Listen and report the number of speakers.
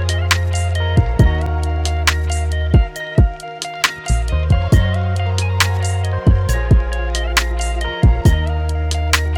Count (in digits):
0